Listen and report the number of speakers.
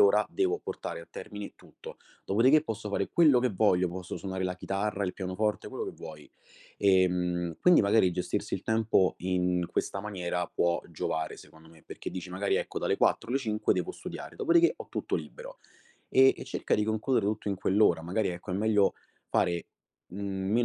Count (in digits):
1